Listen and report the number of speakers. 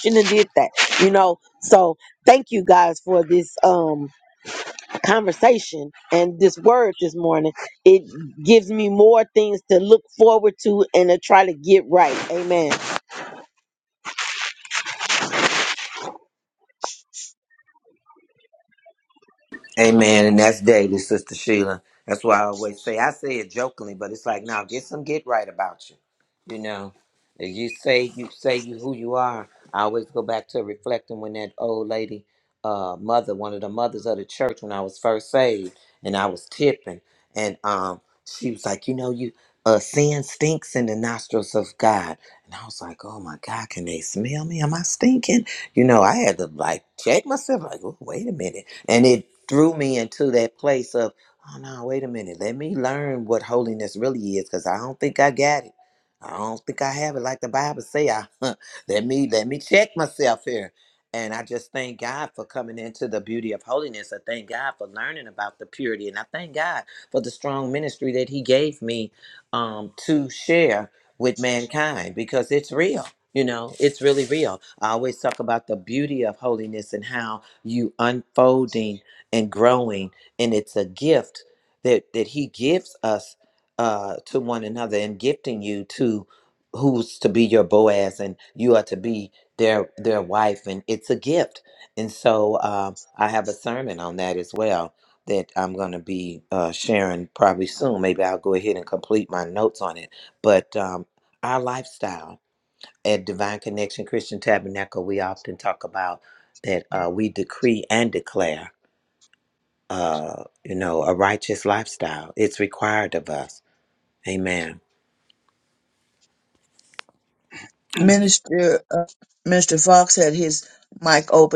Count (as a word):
three